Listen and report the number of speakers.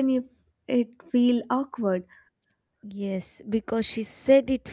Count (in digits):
2